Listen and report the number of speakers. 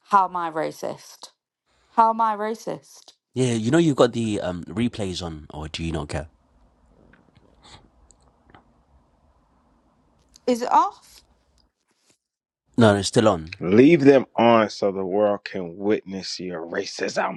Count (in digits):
3